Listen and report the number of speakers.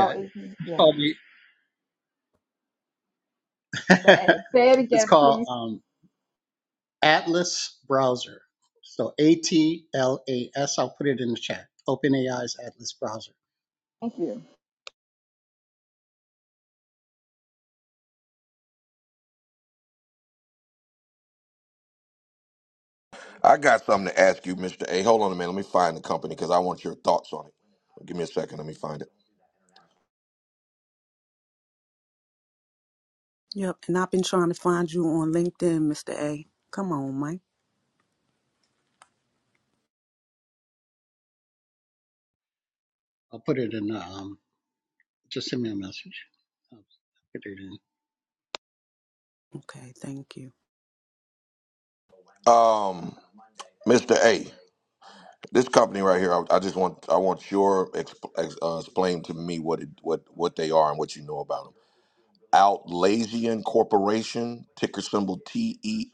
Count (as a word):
four